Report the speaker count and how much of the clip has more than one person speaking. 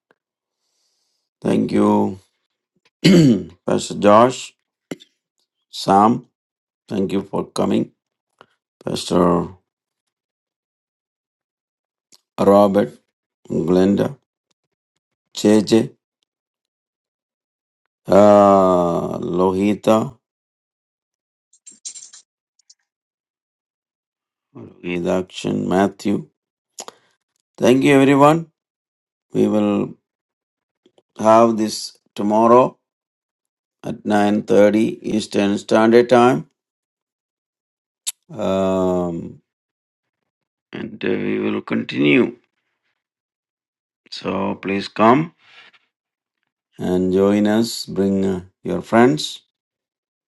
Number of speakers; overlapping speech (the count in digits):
1, no overlap